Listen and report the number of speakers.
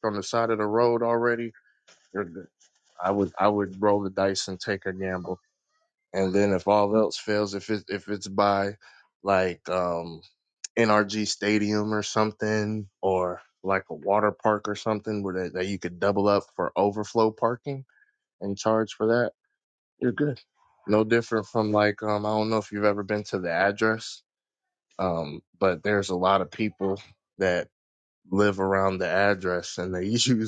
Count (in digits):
1